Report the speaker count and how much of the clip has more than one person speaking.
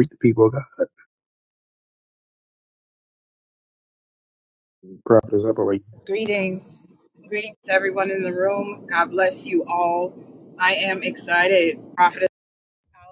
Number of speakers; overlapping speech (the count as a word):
two, no overlap